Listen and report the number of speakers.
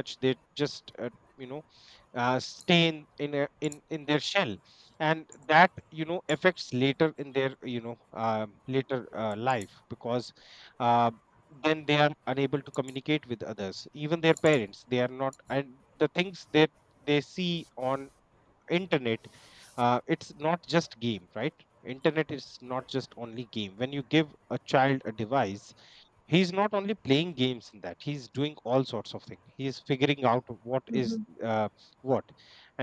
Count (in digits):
1